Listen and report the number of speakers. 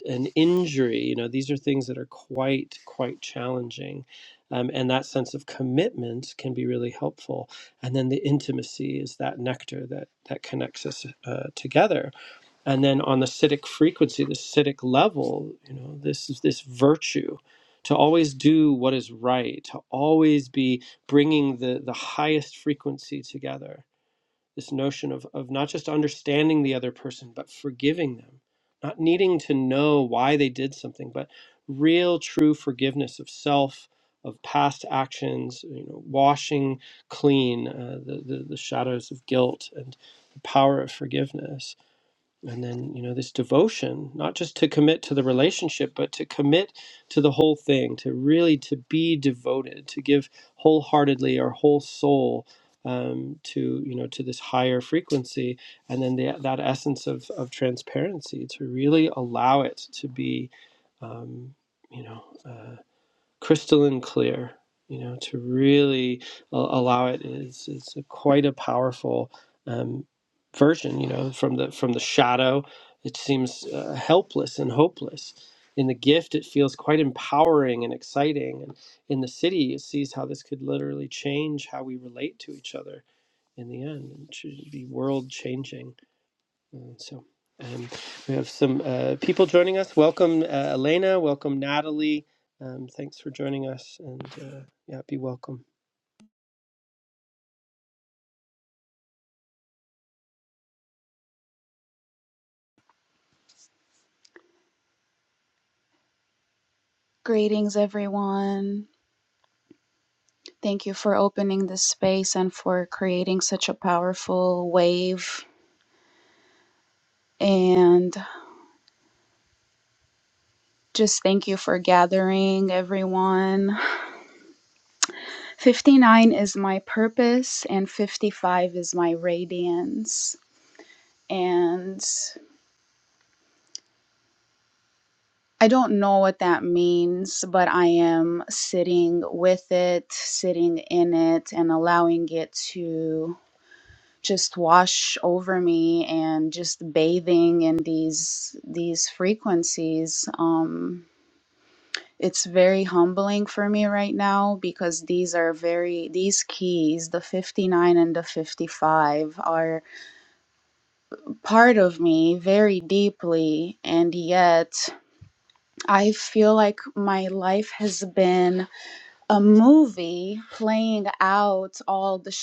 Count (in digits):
2